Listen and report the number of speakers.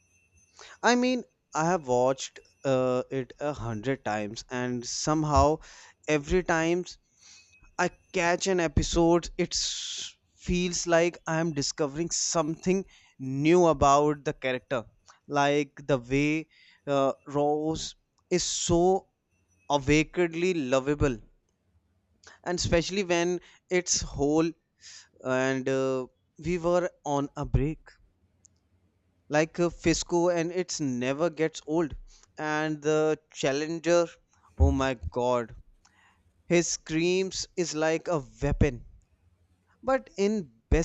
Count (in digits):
1